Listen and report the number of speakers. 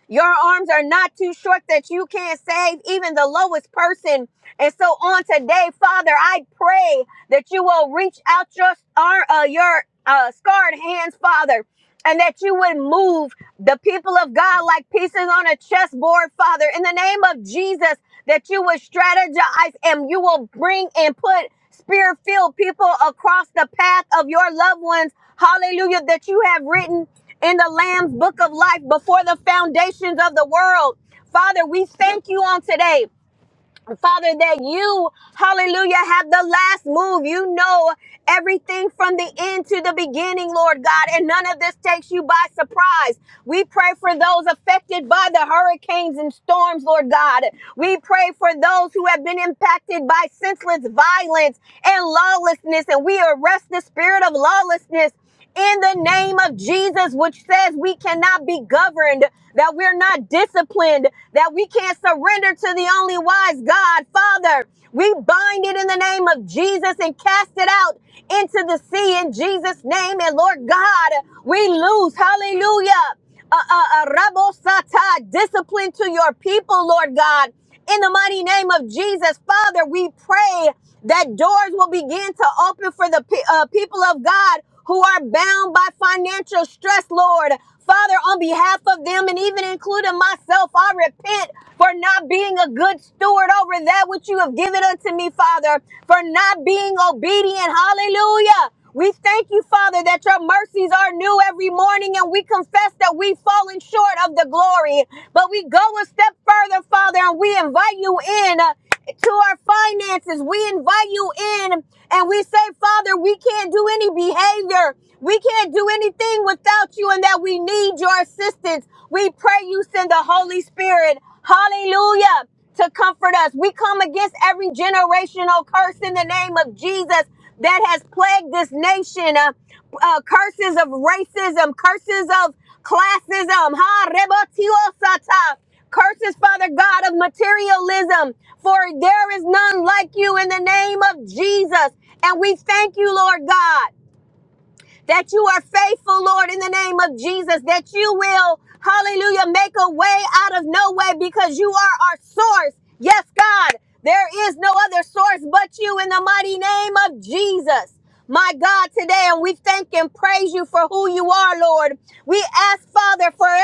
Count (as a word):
one